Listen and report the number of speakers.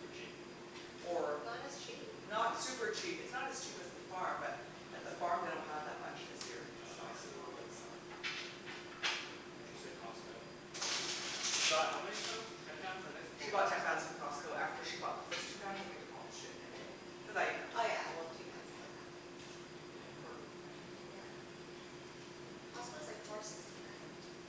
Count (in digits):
3